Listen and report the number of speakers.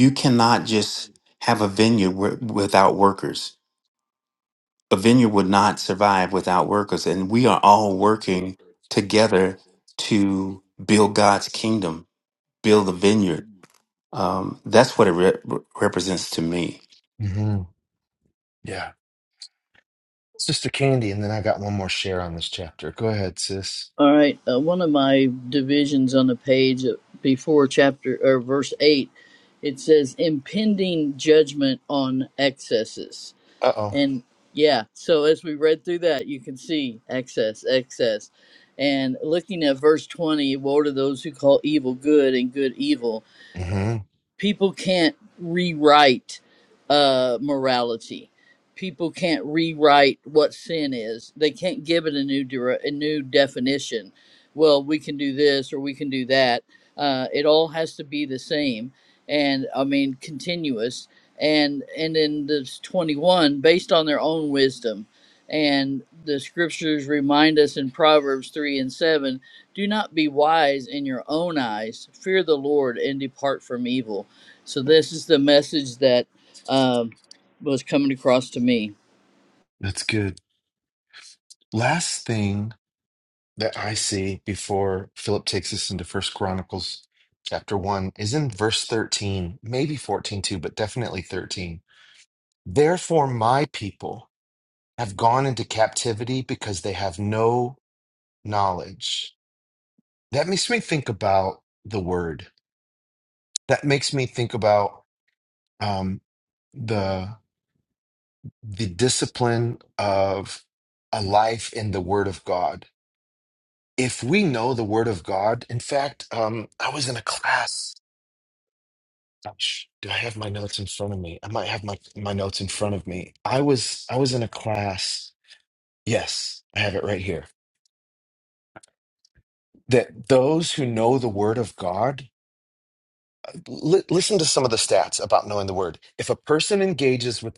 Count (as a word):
three